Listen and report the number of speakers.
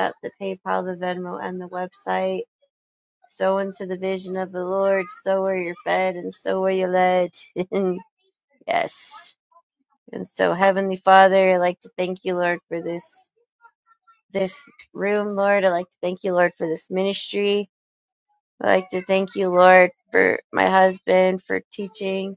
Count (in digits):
1